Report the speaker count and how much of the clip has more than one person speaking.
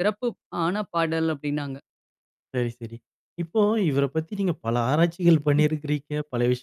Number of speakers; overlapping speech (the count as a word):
two, about 1%